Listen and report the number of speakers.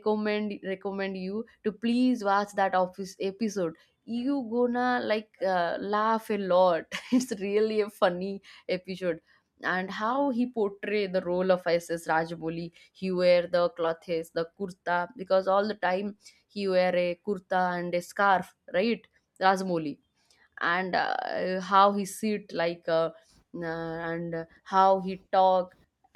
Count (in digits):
1